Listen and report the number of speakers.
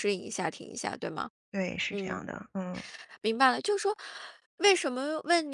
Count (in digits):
2